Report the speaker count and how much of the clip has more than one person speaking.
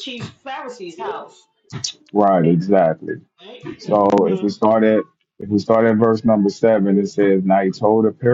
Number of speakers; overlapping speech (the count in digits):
2, about 6%